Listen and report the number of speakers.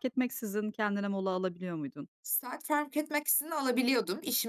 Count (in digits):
2